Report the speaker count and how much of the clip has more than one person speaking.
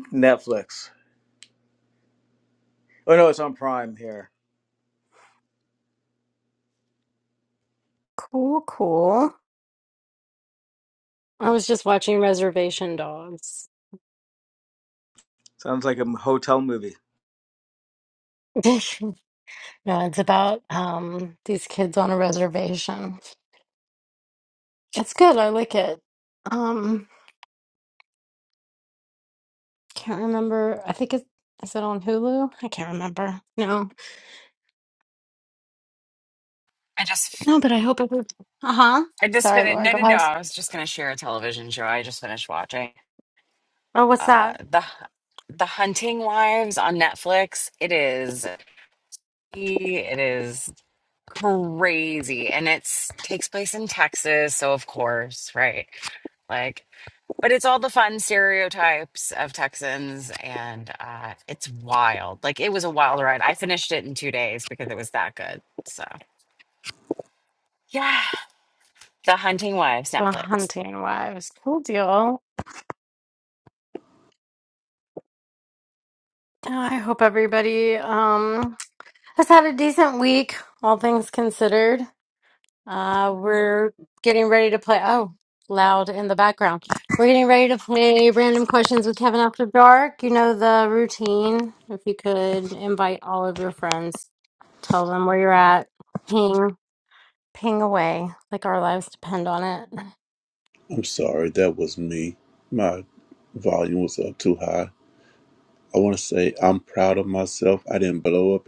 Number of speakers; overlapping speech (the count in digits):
4, about 1%